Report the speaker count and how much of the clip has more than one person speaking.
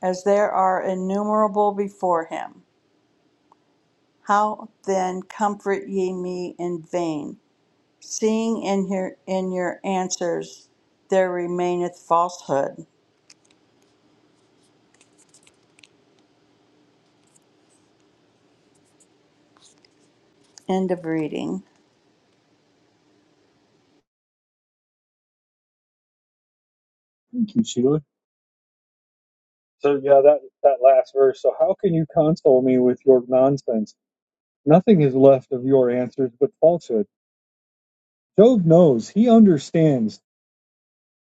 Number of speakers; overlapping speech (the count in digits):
2, no overlap